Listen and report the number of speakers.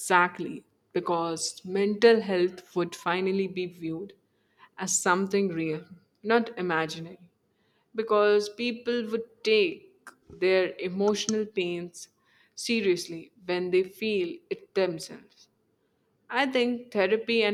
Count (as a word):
one